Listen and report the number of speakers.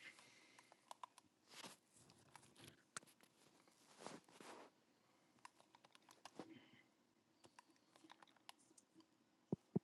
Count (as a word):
zero